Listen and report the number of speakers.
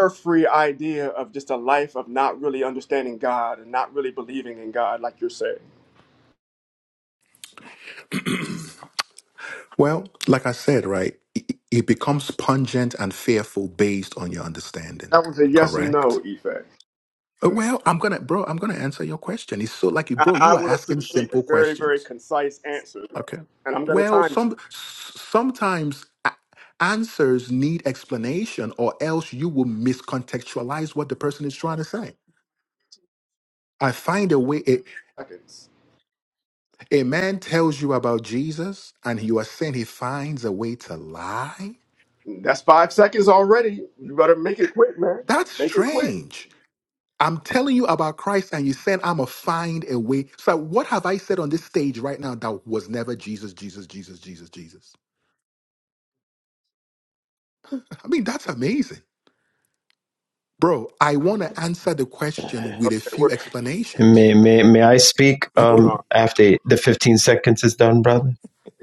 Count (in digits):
3